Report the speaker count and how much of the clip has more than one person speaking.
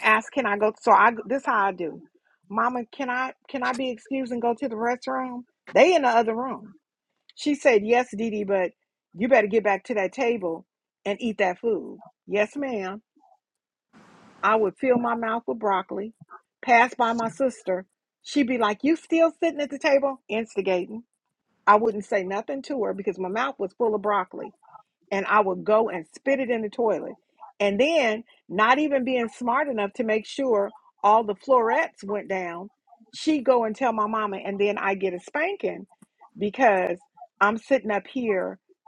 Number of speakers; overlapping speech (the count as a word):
one, no overlap